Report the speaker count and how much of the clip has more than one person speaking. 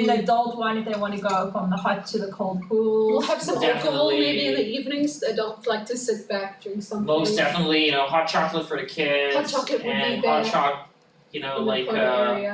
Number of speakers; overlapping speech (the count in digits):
3, about 32%